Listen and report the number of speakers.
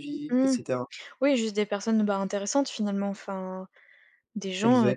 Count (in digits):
2